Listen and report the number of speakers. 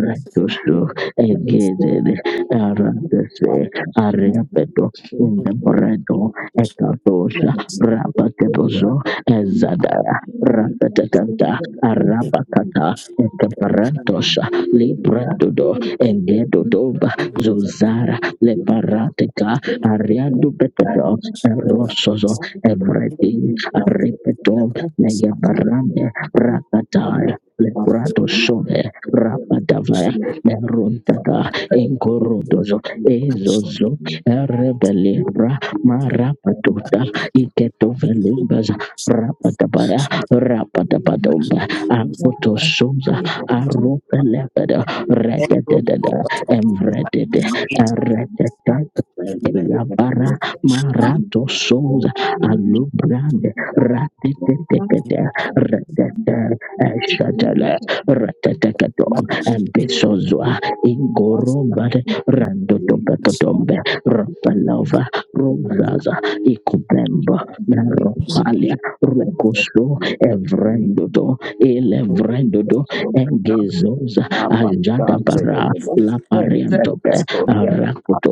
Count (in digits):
2